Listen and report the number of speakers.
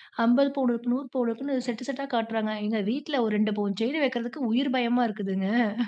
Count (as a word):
one